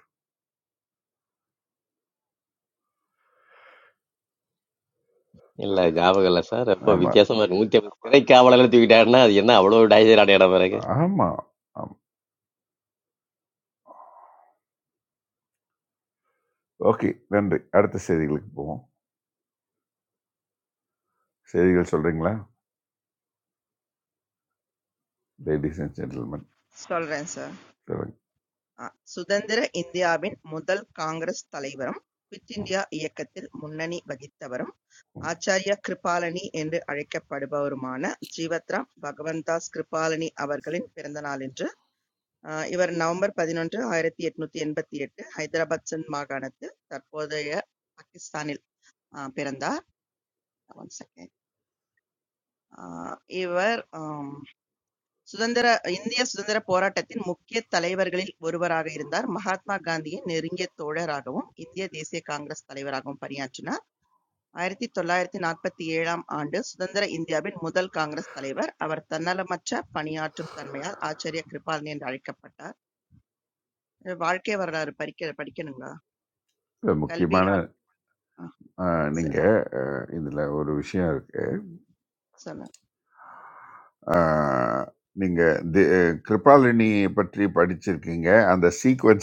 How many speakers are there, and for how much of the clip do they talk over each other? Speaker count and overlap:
3, about 1%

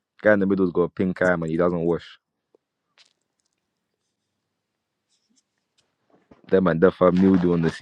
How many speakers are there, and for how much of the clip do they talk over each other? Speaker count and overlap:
1, no overlap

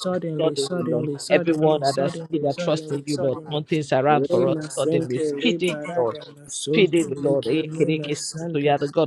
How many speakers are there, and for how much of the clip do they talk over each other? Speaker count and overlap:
2, about 75%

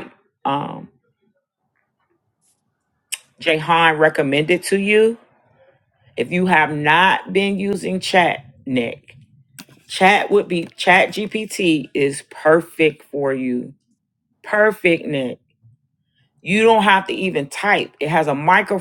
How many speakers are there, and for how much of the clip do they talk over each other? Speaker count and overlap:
1, no overlap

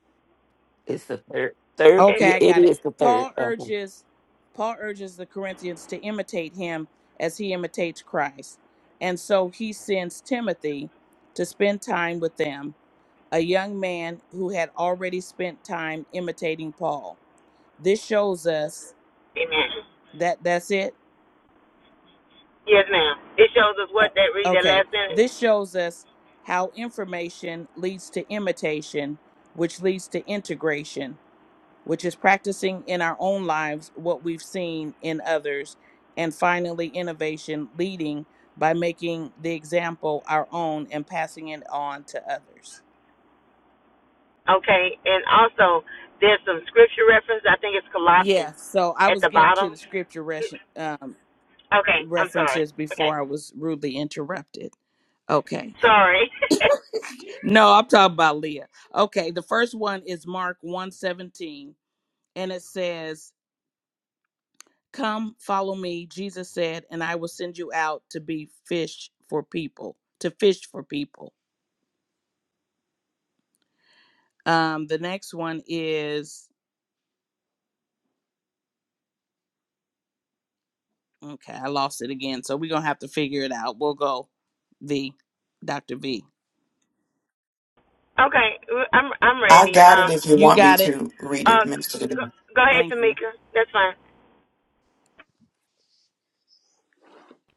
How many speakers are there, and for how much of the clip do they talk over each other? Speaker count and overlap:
4, about 6%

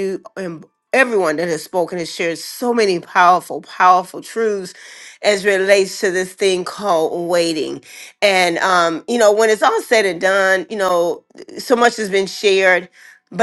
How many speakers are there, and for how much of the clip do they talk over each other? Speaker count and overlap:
1, no overlap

